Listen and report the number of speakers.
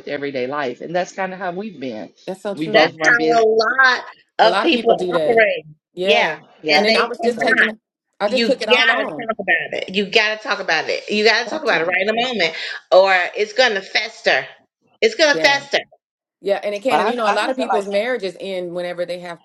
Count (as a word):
three